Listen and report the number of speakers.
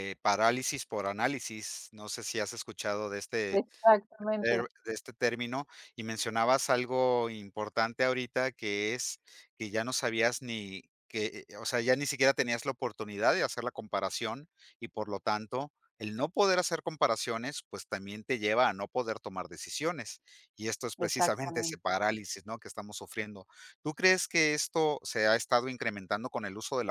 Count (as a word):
two